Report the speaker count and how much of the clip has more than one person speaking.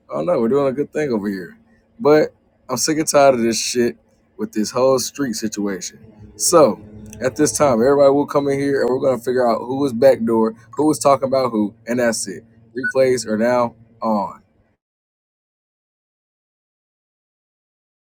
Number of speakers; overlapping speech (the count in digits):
1, no overlap